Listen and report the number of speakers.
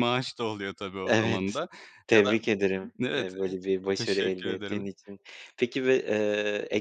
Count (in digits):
2